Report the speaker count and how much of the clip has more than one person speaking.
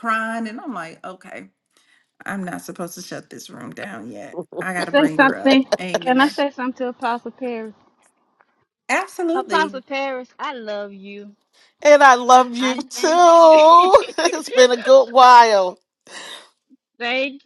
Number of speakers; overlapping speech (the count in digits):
3, about 18%